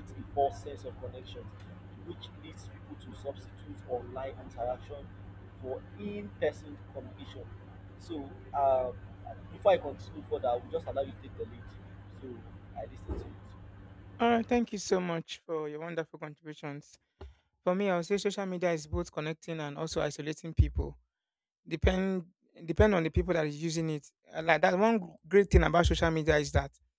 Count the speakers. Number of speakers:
two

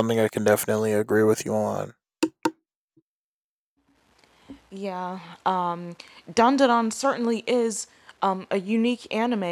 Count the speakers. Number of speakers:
two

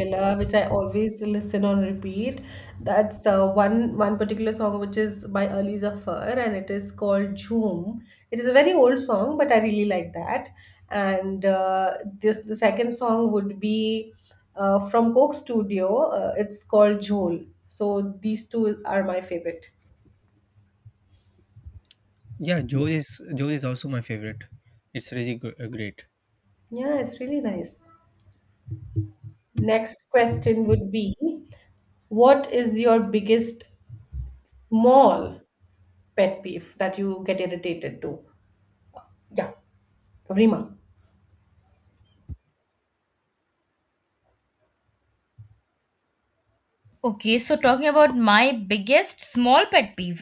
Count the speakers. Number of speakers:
three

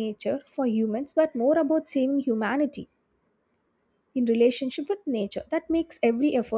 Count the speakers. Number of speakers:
one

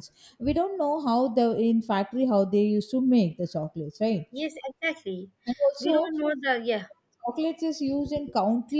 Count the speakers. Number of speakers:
two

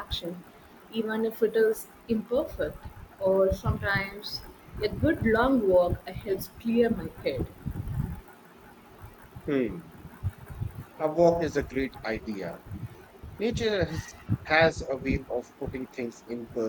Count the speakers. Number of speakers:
two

